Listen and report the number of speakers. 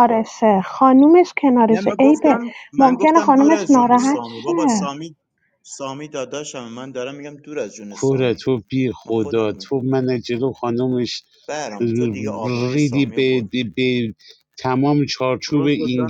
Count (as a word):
three